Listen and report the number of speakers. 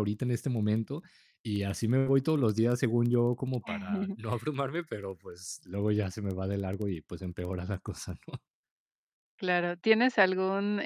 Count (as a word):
two